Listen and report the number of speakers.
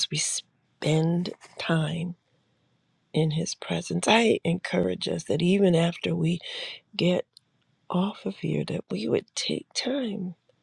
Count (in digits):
1